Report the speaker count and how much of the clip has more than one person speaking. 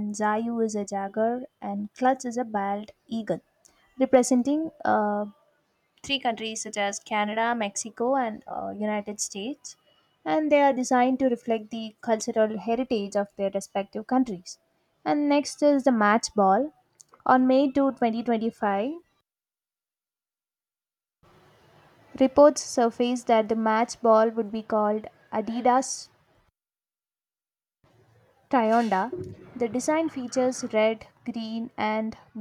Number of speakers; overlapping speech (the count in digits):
1, no overlap